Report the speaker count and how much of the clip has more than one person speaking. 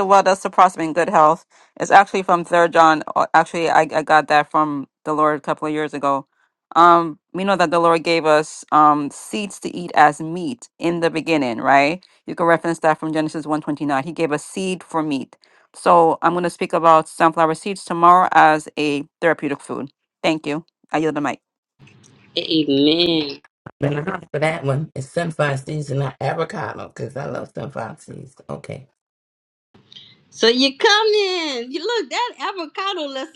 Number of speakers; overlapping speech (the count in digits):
3, no overlap